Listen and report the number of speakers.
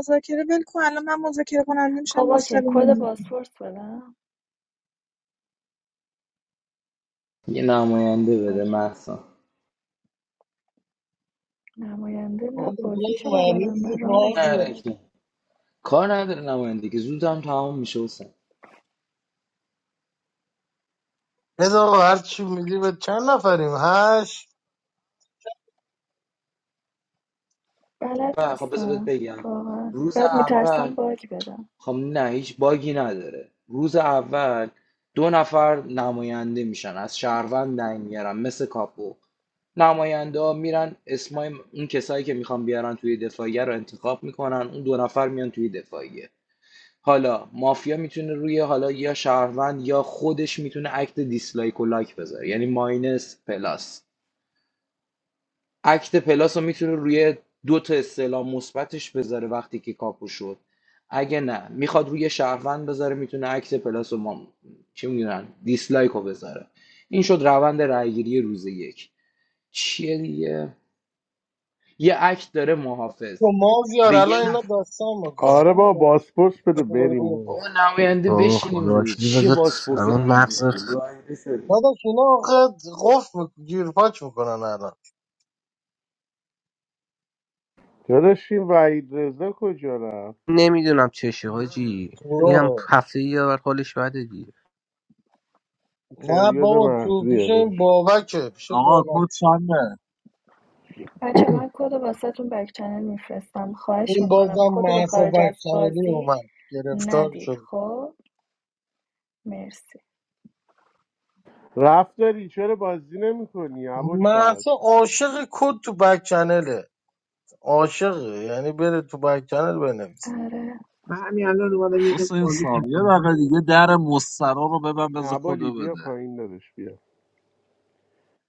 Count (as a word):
eight